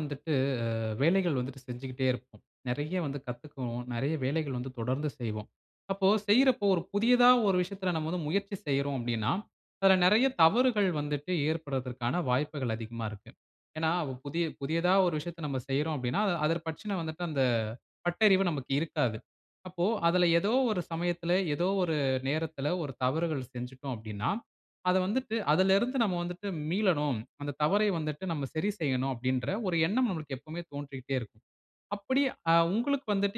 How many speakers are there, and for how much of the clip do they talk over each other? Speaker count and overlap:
one, no overlap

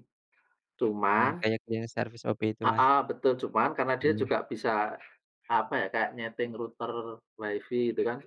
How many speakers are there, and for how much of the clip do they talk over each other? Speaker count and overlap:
two, about 8%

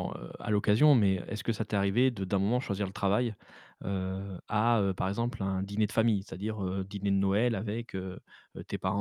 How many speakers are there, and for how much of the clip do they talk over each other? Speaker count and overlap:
one, no overlap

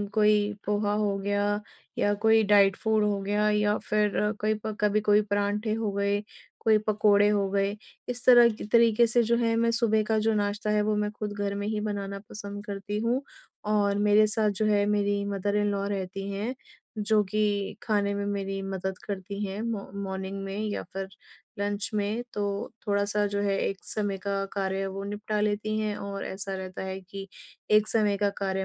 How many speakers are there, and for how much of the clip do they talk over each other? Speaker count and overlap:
one, no overlap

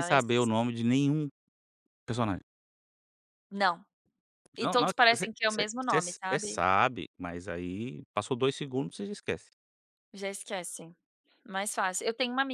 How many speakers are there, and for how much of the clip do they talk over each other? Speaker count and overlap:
two, about 17%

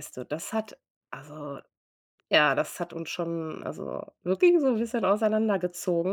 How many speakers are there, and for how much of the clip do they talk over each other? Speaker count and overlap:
one, no overlap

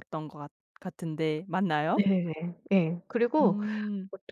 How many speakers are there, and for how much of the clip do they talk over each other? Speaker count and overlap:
two, about 7%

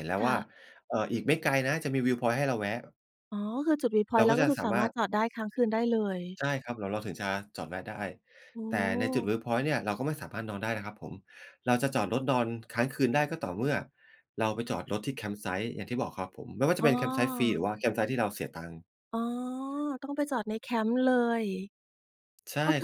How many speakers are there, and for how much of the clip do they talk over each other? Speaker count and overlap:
two, about 10%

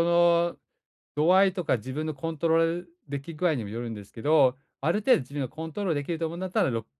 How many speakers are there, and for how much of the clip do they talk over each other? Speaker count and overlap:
one, no overlap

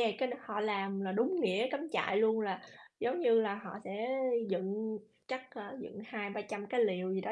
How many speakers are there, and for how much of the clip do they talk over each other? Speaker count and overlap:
one, no overlap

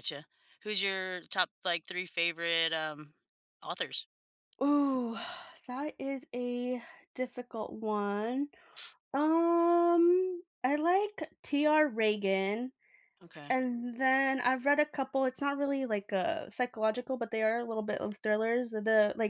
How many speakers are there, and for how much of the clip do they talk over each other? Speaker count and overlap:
two, under 1%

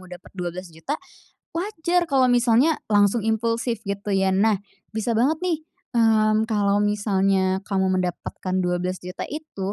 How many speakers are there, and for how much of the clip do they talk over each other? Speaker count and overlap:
one, no overlap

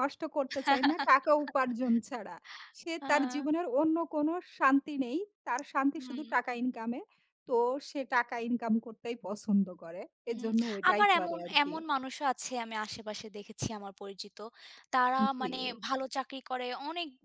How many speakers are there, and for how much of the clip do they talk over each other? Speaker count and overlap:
two, about 13%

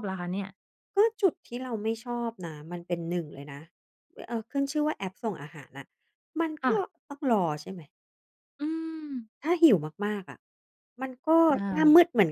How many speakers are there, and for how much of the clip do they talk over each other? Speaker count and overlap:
two, about 3%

